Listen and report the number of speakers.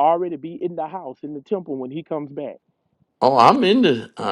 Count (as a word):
two